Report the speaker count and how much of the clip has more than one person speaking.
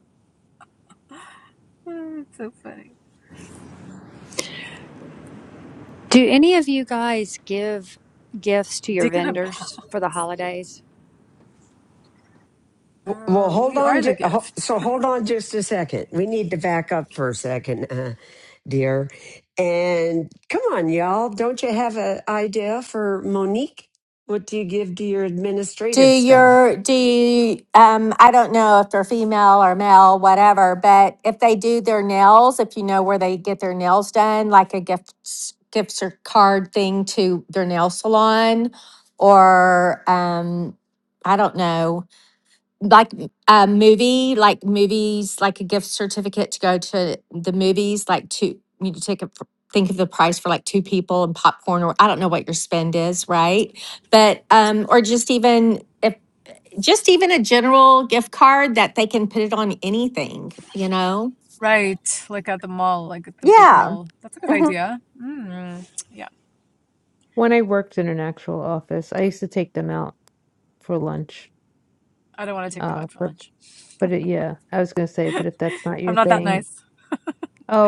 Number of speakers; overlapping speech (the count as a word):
five, about 6%